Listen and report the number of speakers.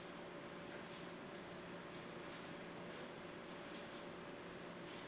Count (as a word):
zero